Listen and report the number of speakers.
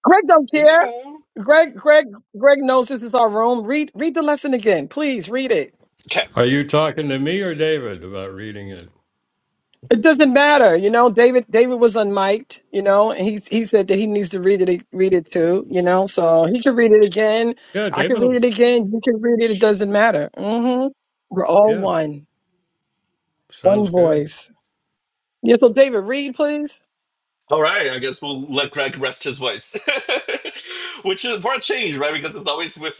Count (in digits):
3